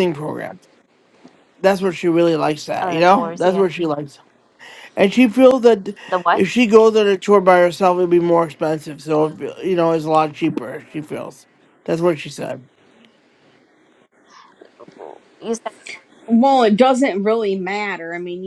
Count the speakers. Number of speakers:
3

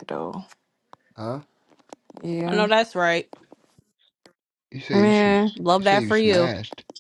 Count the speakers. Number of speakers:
3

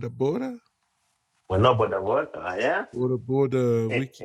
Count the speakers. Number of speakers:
2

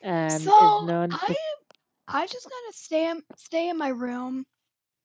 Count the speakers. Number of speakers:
2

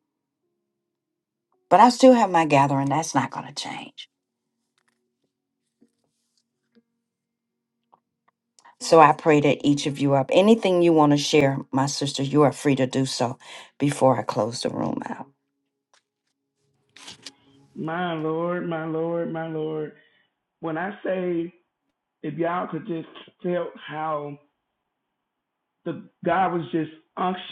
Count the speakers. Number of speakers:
2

